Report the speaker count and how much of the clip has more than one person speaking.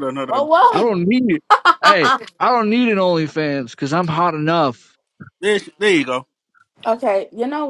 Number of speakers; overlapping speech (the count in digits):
3, about 4%